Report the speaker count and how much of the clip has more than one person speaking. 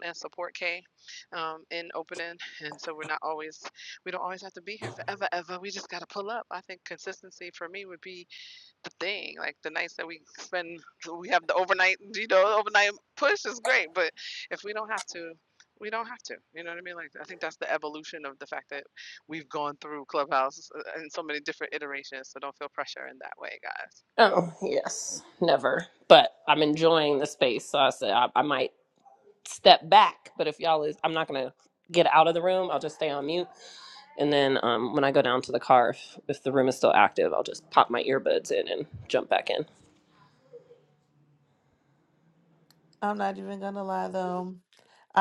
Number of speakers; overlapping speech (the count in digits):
3, no overlap